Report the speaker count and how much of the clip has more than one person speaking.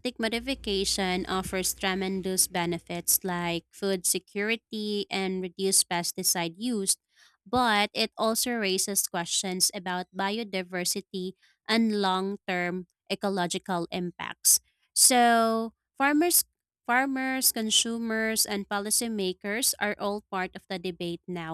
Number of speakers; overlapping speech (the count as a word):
one, no overlap